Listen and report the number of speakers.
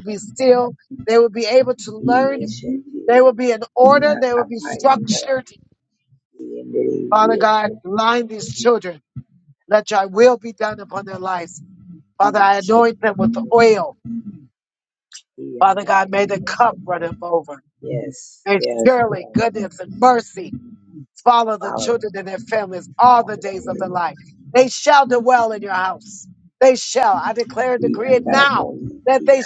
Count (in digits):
2